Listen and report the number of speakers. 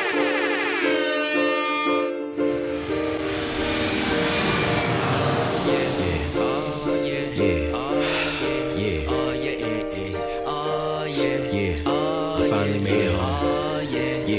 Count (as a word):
zero